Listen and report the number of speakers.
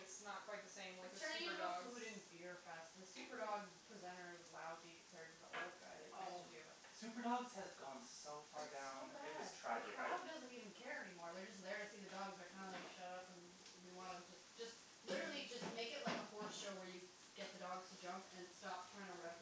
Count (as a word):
three